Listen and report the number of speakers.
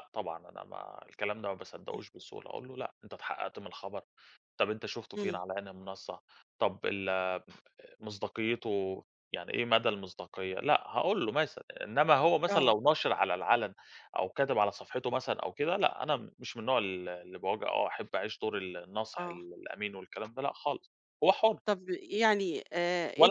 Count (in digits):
2